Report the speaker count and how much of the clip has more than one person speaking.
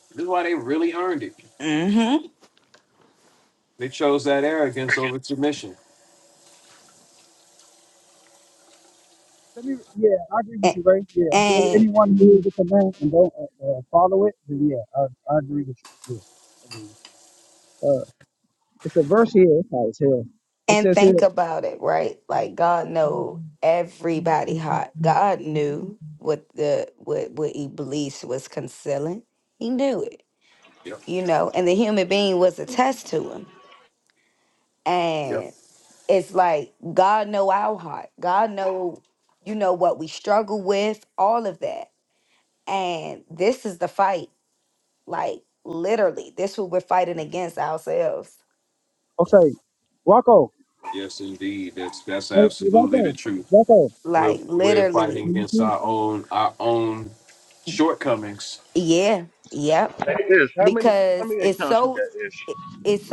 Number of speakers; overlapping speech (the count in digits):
4, about 8%